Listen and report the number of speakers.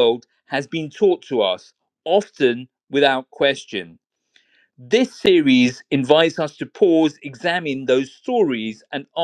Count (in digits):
1